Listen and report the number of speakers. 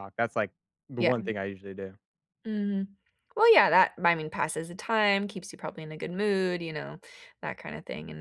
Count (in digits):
2